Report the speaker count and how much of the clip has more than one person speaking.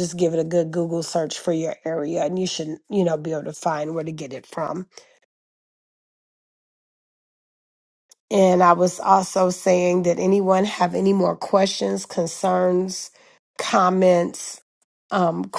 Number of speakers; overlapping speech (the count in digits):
1, no overlap